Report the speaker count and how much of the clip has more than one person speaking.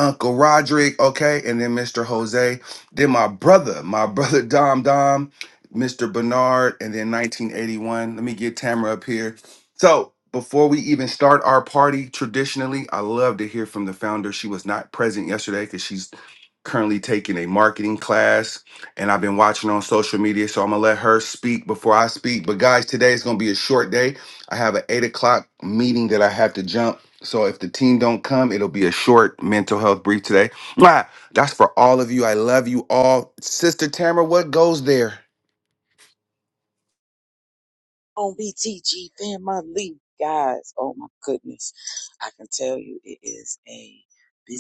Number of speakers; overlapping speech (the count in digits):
2, no overlap